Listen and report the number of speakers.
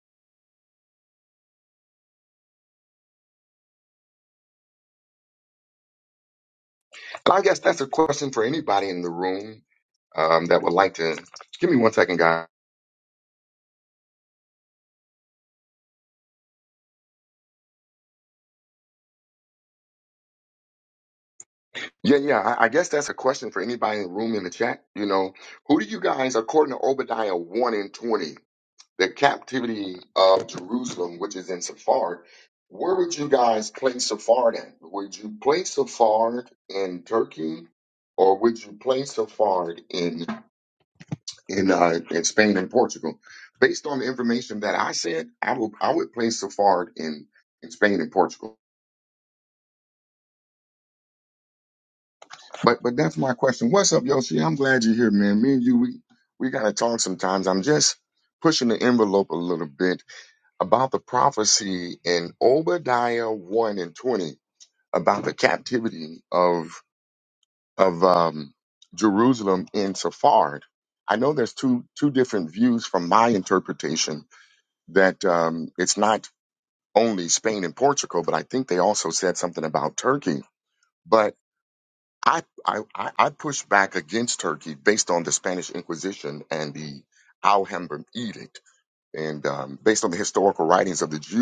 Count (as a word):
one